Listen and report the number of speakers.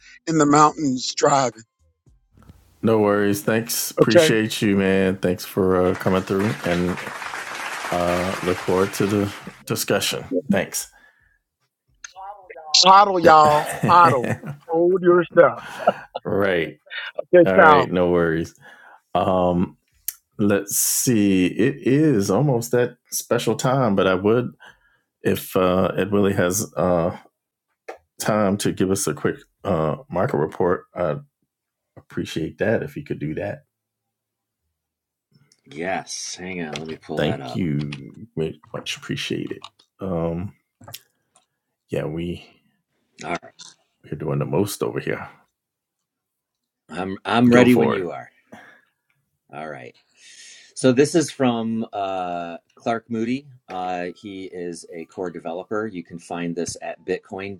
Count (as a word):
three